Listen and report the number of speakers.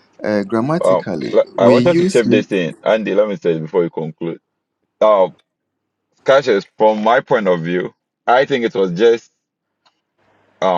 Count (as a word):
two